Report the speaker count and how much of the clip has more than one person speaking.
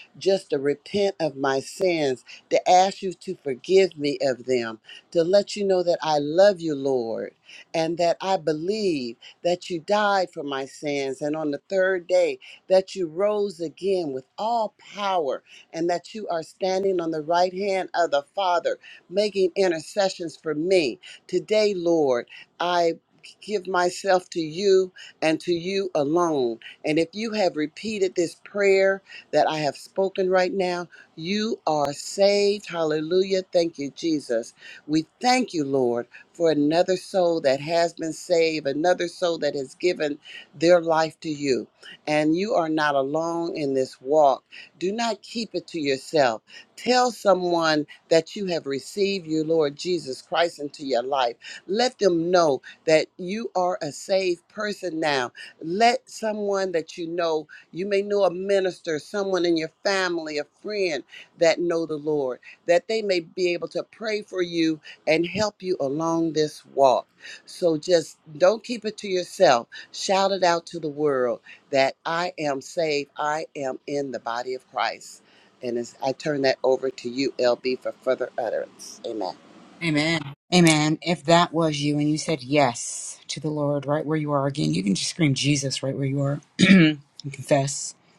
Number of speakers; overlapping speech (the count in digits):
2, no overlap